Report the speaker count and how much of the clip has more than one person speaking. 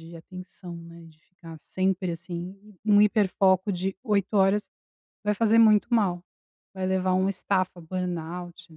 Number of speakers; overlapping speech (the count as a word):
one, no overlap